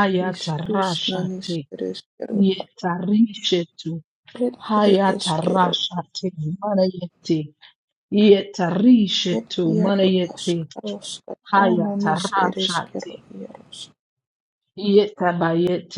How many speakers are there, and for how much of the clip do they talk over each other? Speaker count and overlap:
two, about 27%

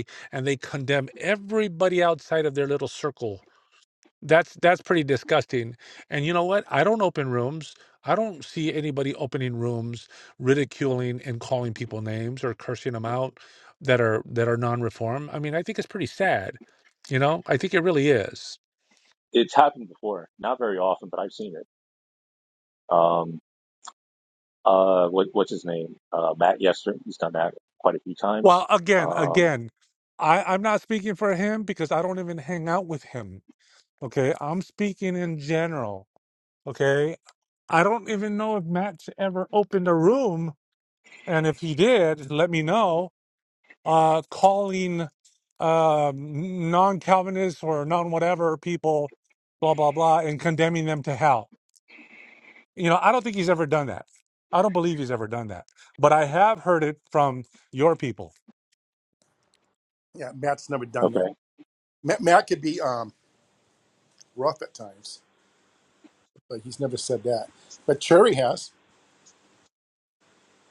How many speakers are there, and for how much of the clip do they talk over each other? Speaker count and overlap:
three, about 1%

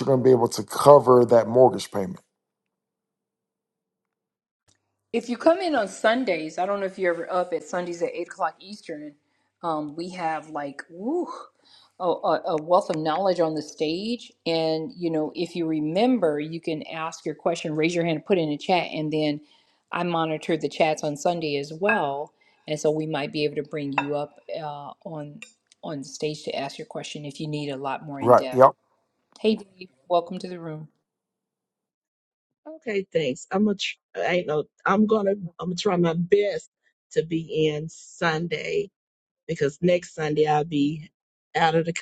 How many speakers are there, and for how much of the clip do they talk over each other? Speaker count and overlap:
three, about 1%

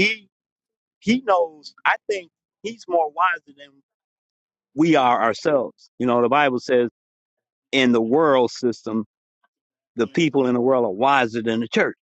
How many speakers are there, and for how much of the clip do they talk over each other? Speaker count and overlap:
one, no overlap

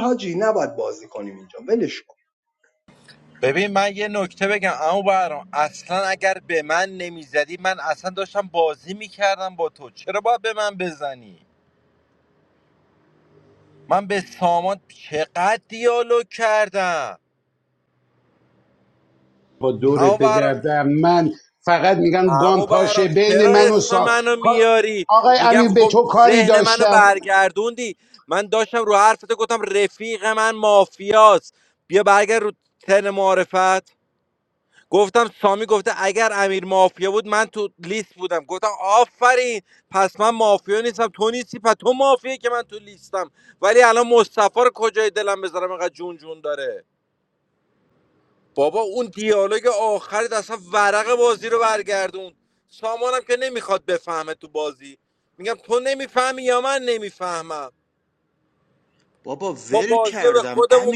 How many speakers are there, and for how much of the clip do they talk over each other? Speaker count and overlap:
four, about 9%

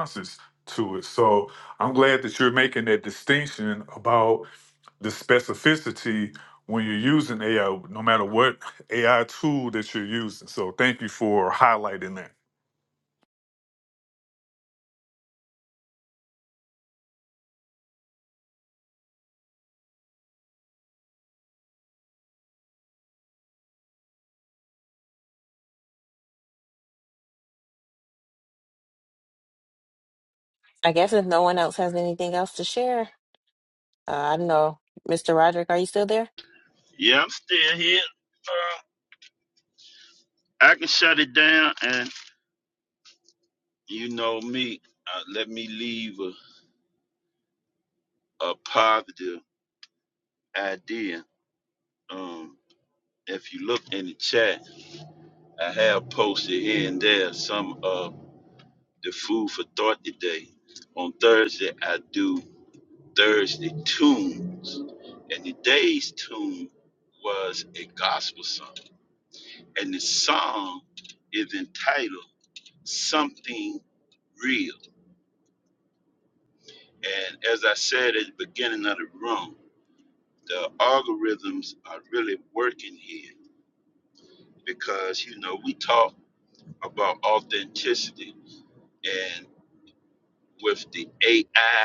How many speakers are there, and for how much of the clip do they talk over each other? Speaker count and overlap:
three, no overlap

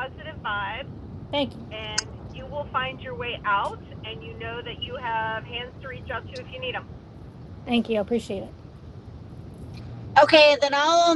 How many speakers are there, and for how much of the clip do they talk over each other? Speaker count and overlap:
three, no overlap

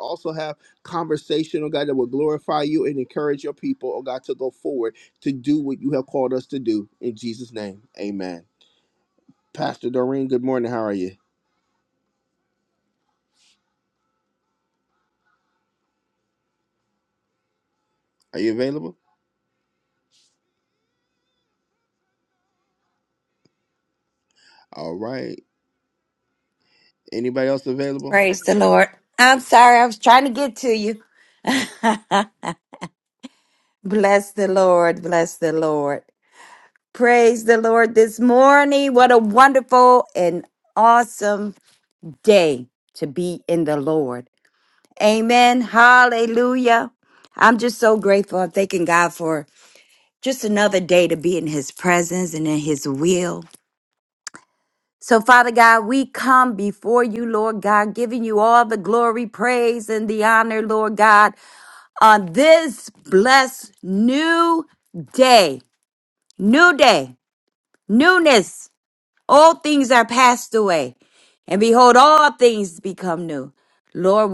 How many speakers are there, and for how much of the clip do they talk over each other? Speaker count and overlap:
two, under 1%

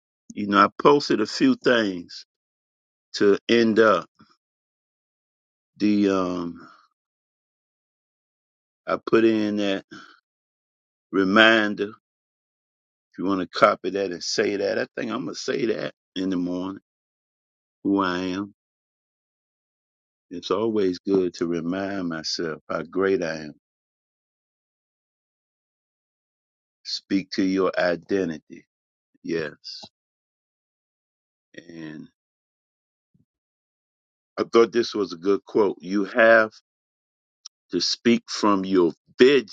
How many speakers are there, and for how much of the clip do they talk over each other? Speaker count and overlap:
one, no overlap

